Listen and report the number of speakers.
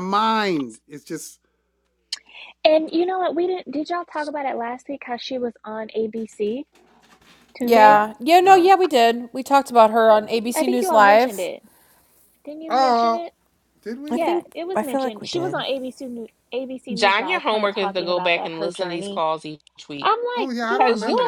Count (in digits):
4